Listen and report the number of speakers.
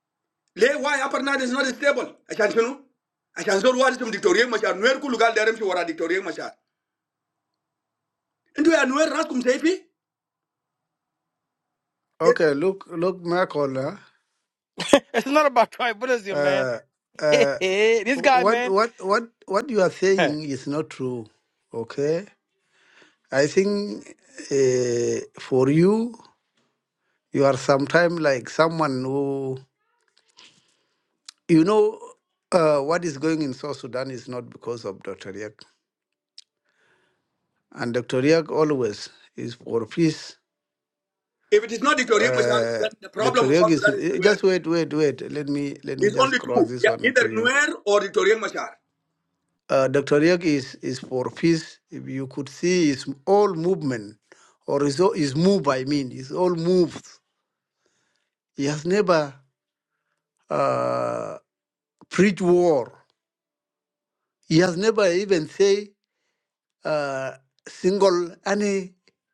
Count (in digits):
3